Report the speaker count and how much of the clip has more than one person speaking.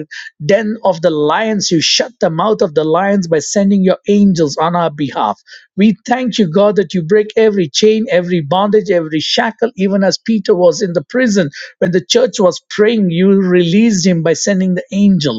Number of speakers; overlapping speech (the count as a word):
one, no overlap